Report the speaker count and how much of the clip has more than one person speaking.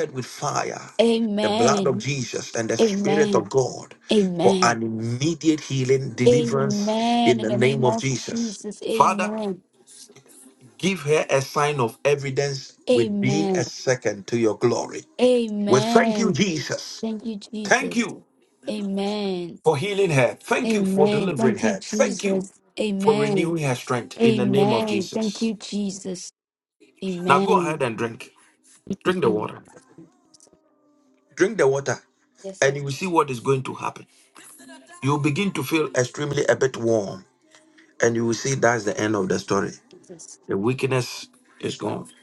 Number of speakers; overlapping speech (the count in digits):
2, about 24%